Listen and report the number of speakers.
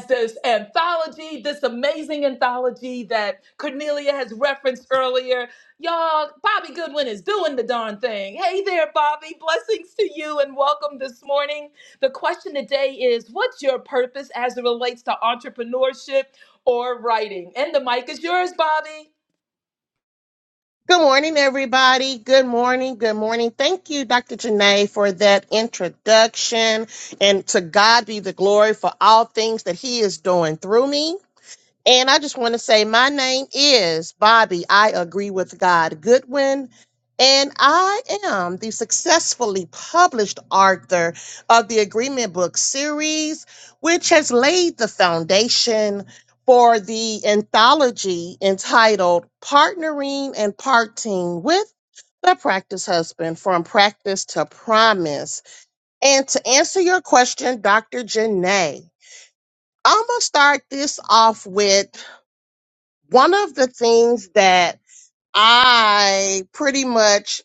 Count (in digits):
2